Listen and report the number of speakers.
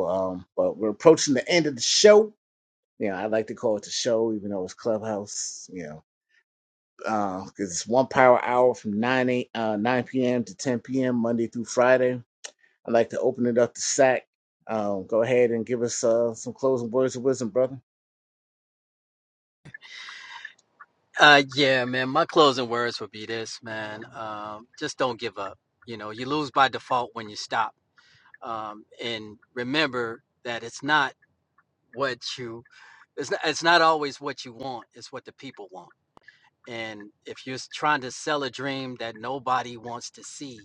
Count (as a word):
two